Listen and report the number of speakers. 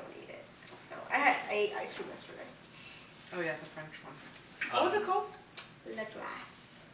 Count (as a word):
two